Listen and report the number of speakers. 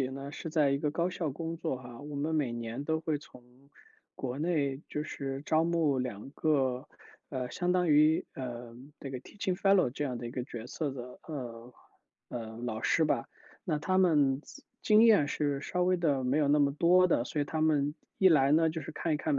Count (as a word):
one